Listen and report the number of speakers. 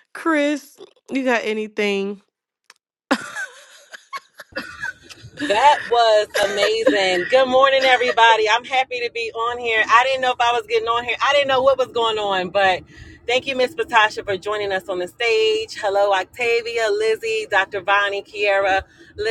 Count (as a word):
two